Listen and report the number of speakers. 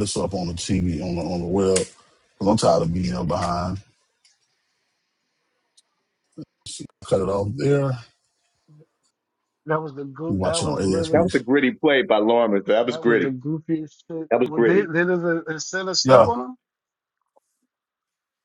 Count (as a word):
three